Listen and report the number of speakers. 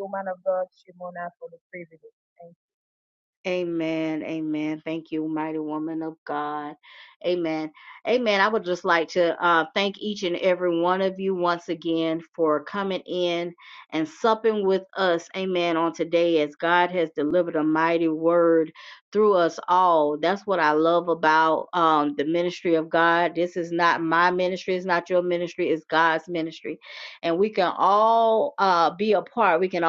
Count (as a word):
two